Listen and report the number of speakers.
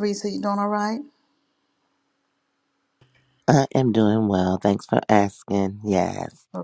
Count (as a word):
two